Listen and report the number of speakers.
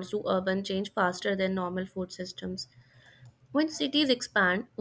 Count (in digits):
1